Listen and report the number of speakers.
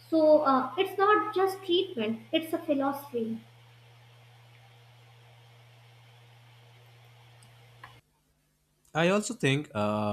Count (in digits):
2